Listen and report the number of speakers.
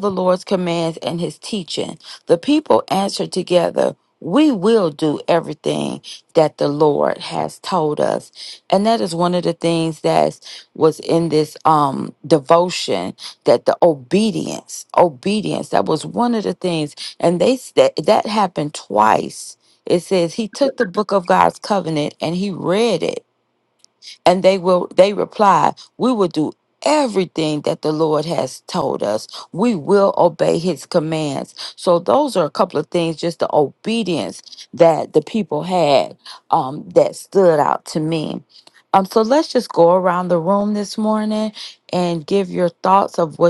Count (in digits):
1